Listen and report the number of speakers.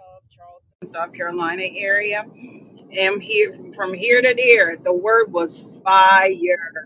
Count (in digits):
1